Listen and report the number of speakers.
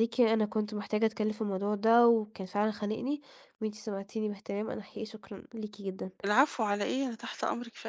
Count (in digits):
2